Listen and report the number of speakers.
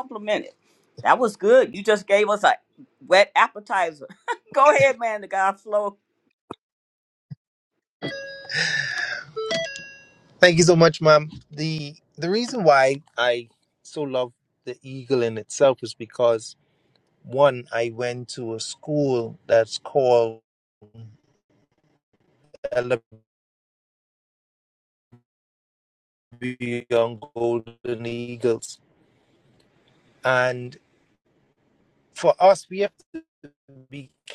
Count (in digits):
2